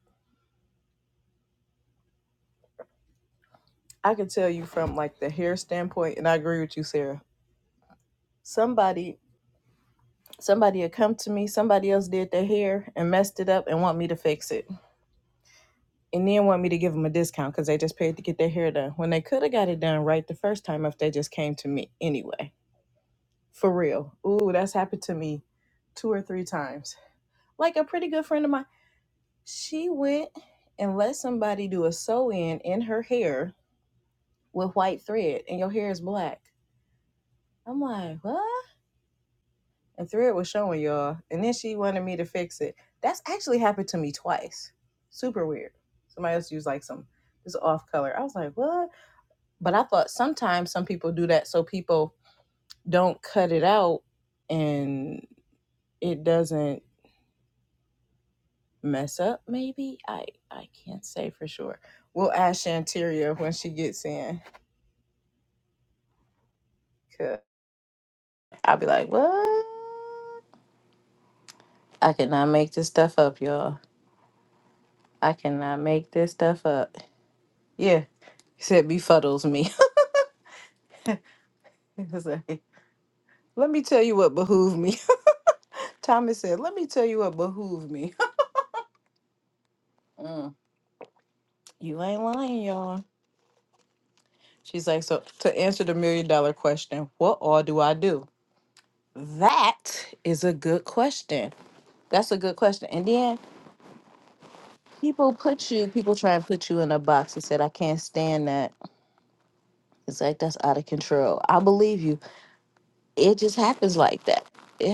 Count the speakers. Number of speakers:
one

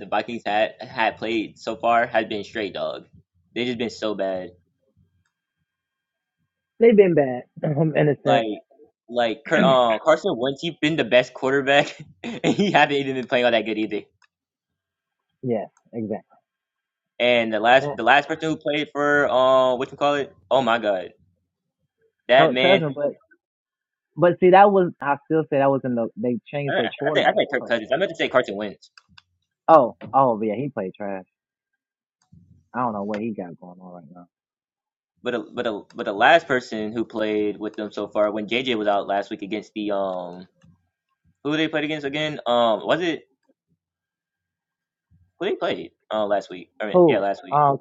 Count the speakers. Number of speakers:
two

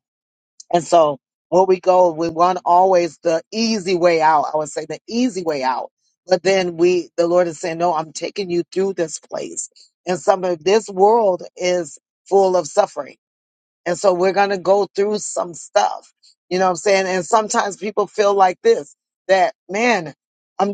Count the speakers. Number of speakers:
one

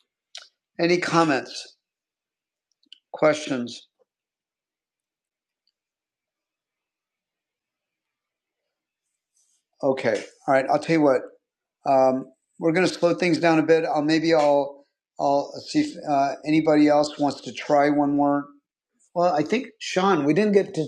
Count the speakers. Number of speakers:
one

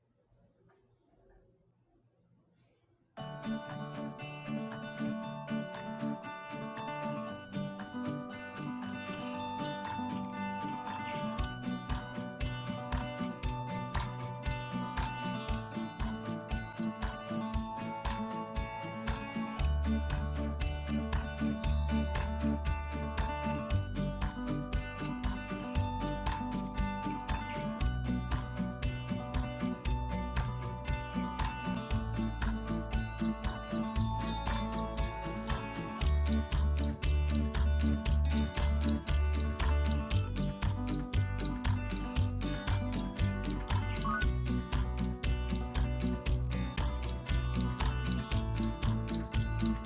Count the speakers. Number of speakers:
zero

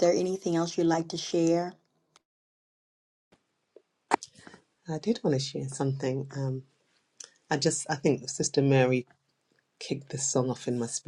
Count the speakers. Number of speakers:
two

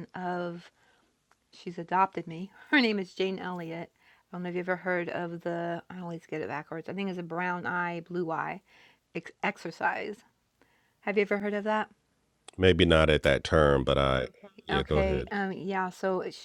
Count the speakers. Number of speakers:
two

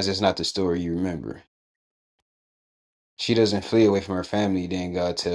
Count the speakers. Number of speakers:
one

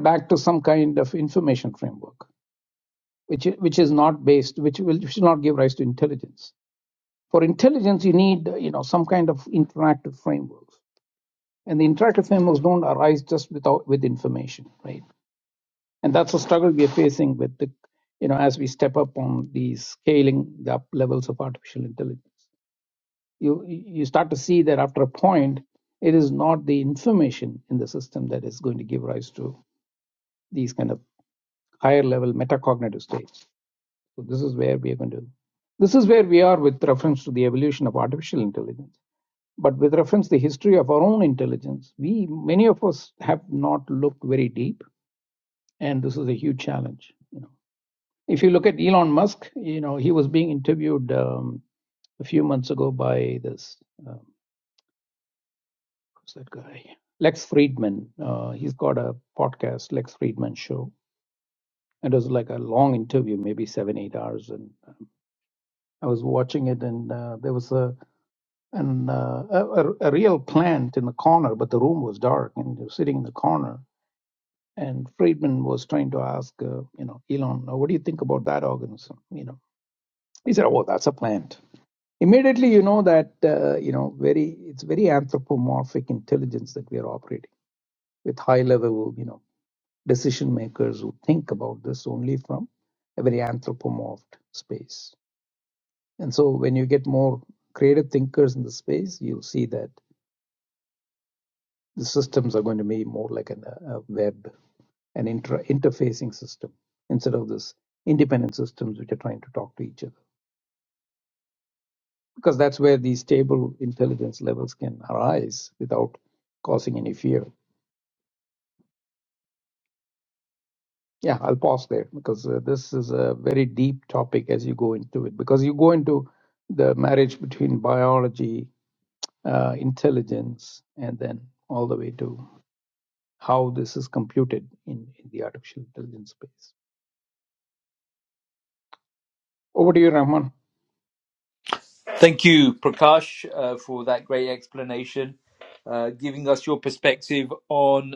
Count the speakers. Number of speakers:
two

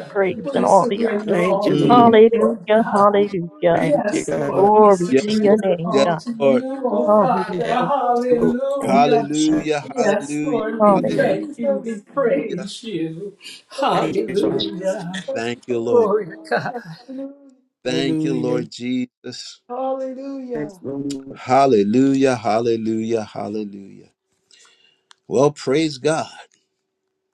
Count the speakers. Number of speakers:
five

